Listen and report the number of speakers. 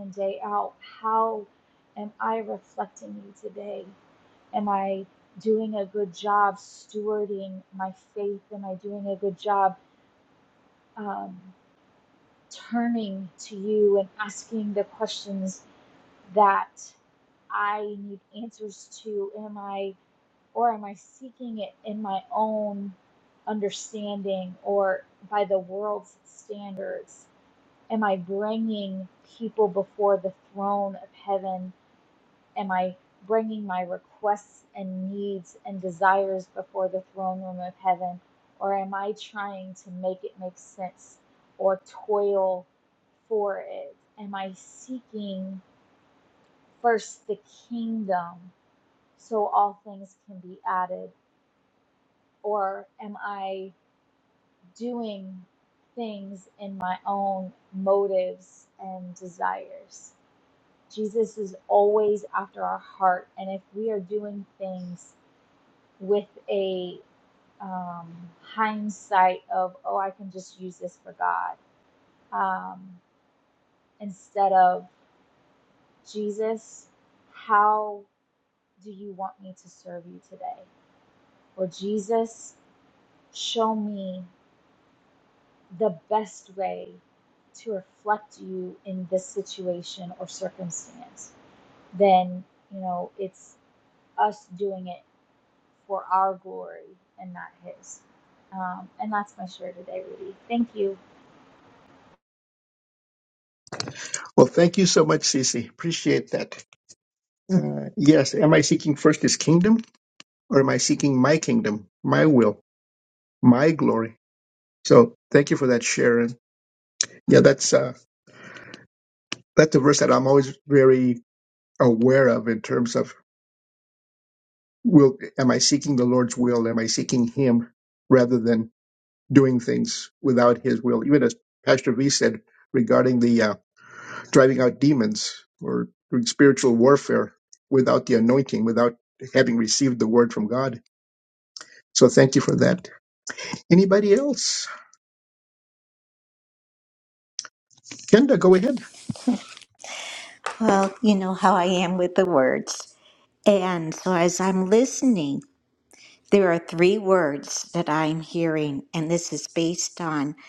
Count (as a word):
three